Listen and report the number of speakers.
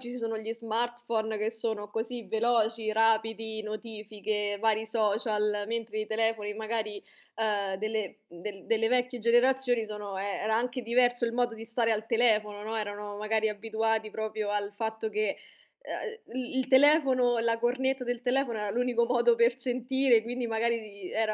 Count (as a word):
one